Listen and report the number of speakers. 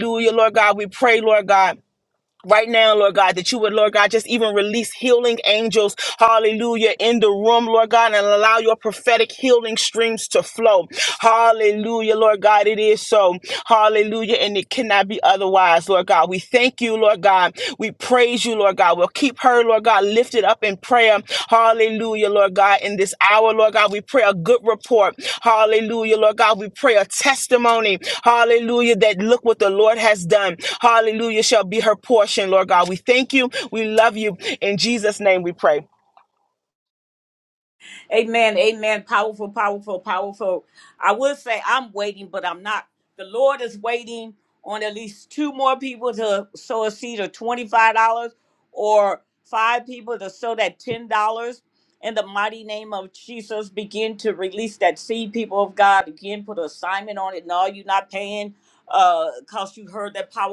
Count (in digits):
2